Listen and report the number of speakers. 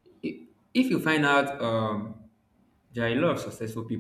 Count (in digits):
1